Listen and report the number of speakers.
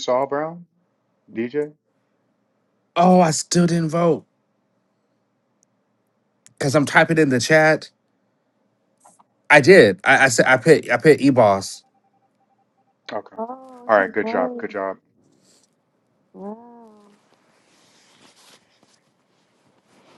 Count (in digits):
3